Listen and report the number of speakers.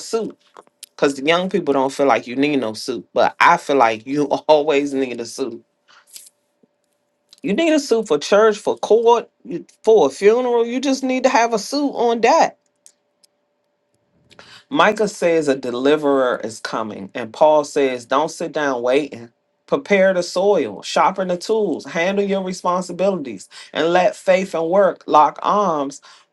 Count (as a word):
one